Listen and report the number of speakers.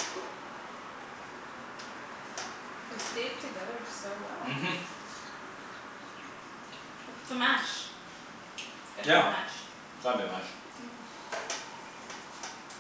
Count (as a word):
two